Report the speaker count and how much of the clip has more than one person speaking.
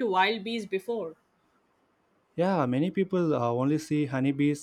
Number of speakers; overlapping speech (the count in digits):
2, no overlap